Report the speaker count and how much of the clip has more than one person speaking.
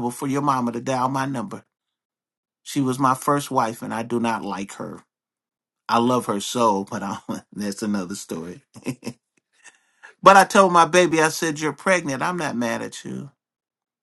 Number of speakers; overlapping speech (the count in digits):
1, no overlap